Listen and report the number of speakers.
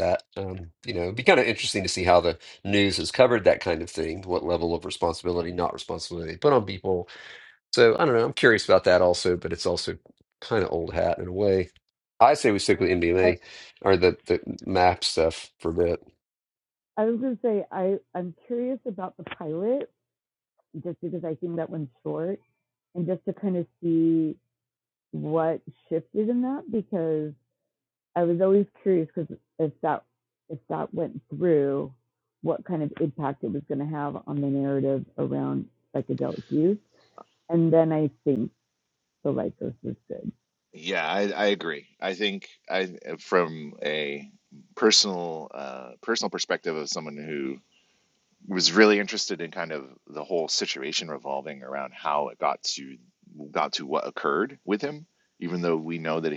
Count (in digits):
3